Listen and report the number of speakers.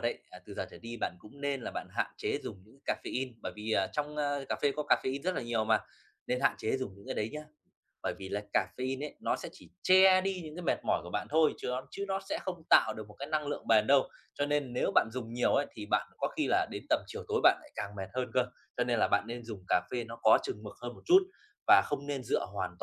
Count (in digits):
1